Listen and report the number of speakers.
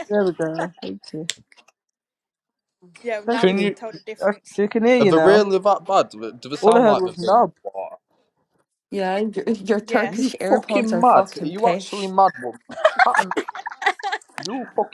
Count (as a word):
four